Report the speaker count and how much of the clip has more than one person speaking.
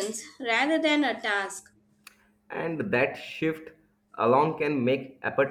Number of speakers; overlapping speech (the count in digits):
2, no overlap